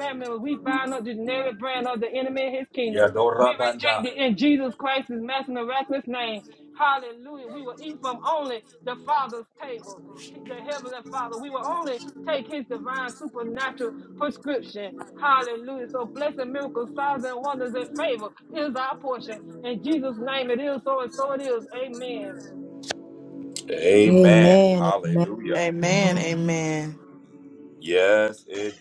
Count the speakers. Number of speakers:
three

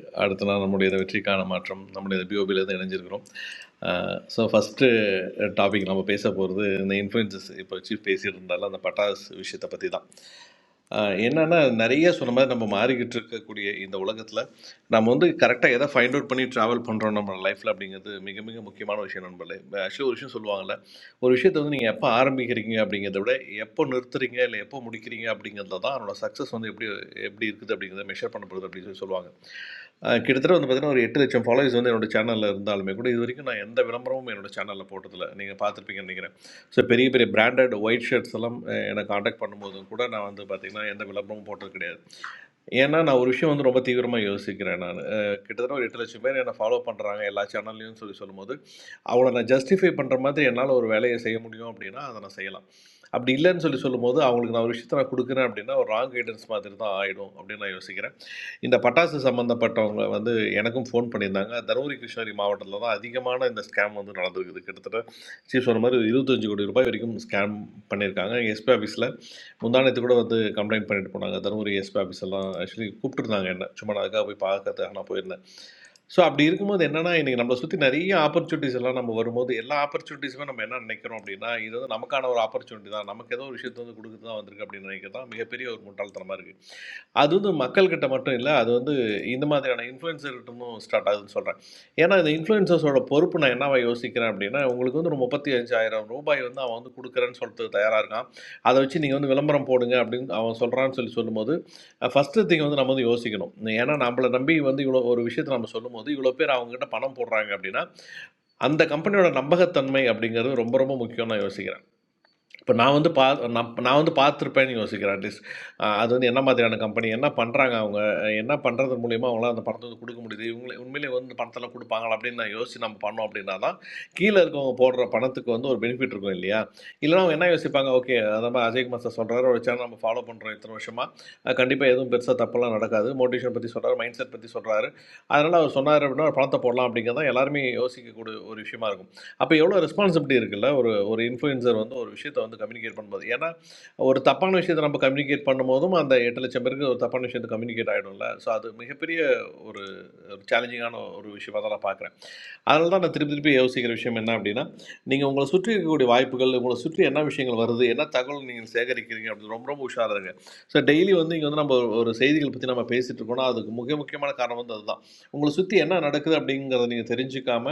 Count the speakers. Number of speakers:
one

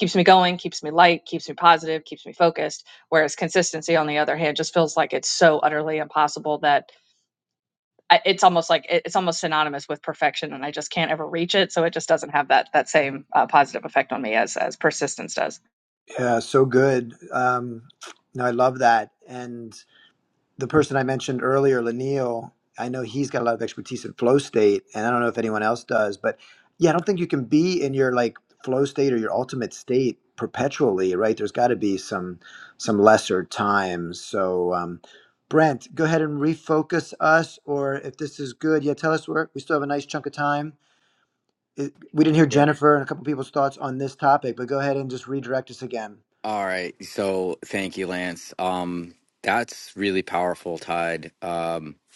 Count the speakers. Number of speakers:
three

